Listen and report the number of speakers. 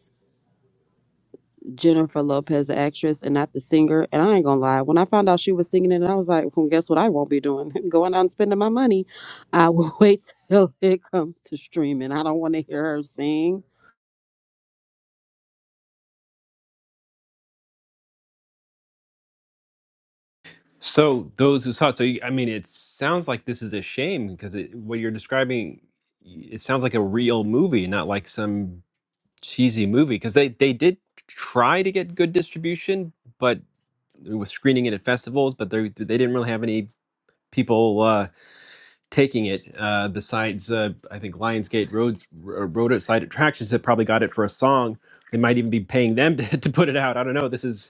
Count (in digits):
2